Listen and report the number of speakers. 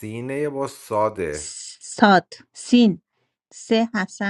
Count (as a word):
two